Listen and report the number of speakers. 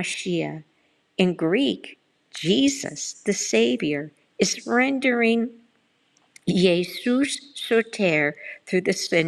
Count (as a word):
one